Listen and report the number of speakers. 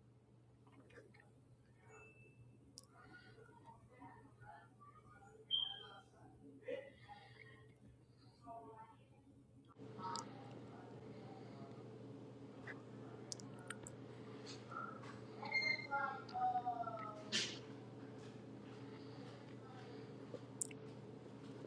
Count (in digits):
0